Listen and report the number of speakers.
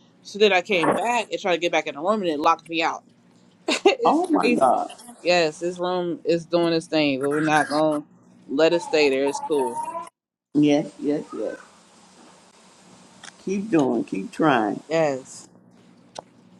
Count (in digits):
2